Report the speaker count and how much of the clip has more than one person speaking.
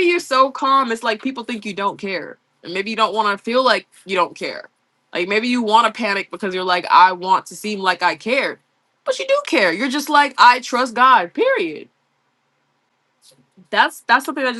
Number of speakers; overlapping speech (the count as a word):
one, no overlap